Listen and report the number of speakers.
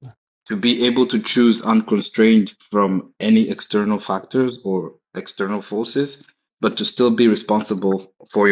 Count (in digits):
1